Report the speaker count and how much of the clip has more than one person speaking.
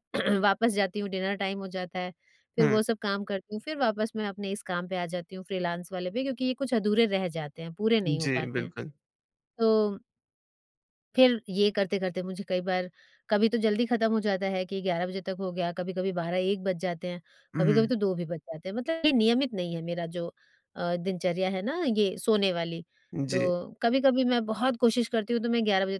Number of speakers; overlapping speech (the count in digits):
2, about 5%